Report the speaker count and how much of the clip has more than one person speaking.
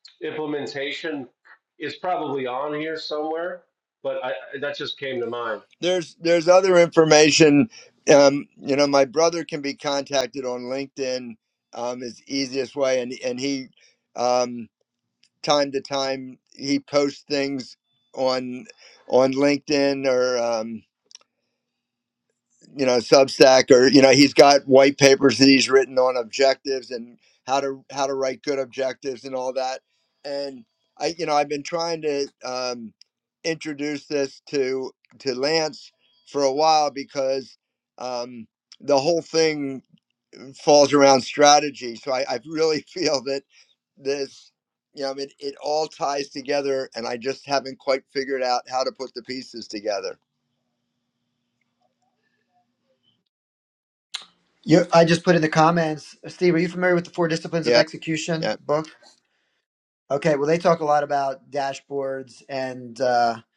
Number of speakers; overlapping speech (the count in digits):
3, about 1%